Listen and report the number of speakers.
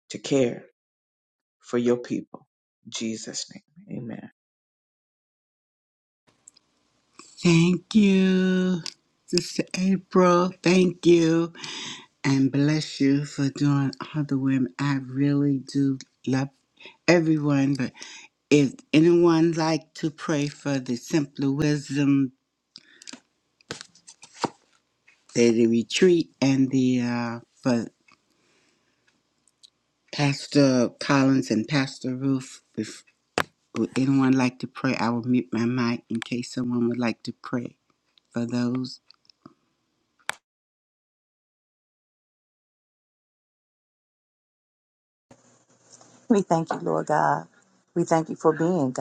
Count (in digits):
3